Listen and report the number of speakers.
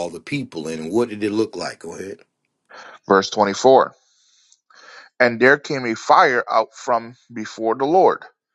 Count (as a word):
two